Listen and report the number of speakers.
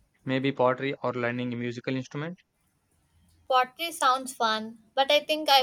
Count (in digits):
2